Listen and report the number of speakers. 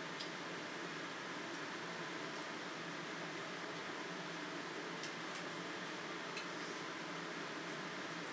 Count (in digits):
0